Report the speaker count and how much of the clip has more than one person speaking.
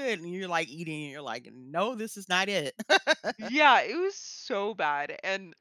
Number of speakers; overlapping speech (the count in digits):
2, no overlap